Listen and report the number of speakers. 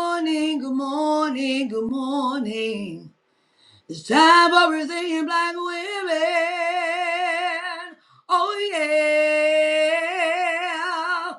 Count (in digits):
1